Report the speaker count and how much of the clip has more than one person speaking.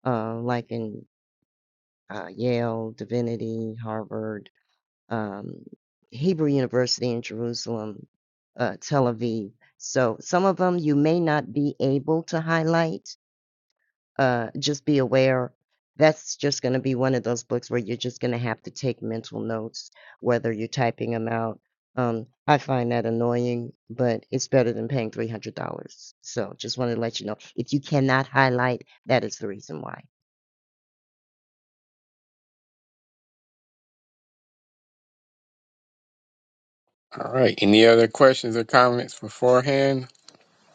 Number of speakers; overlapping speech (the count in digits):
2, no overlap